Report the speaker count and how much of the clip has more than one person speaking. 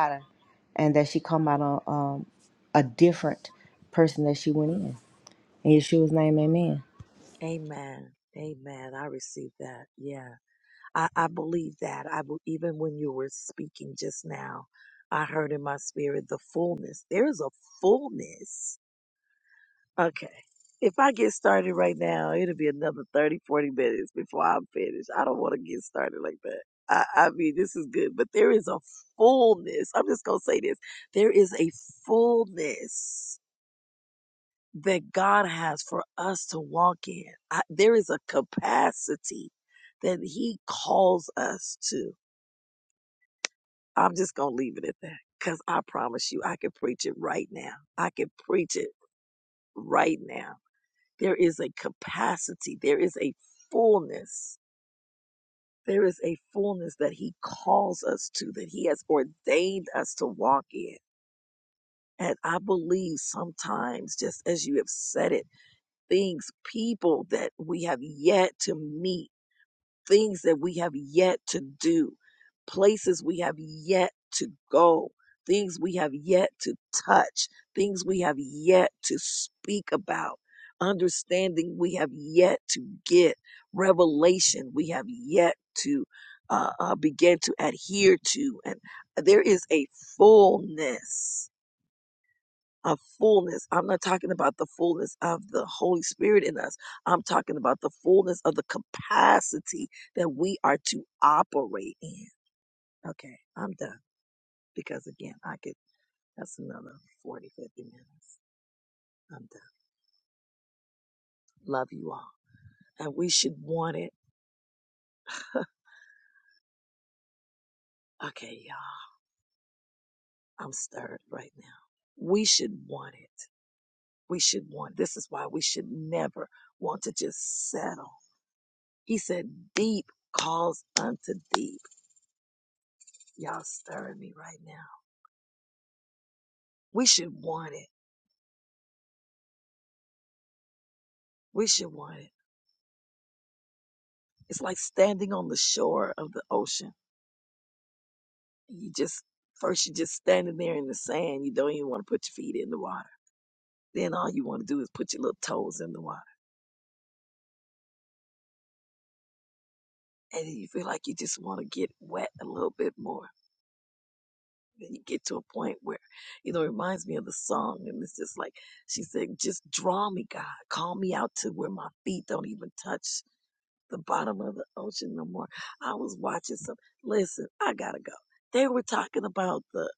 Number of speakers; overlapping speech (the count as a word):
two, no overlap